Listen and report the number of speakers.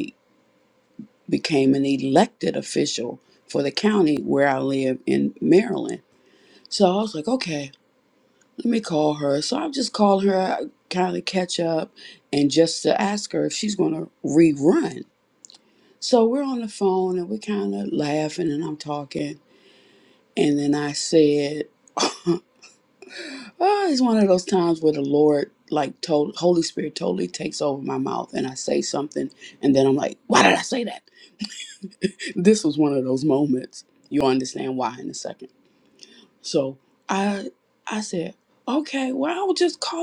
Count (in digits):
1